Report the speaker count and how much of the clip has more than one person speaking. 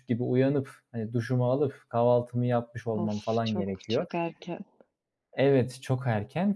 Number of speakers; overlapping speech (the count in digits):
2, about 18%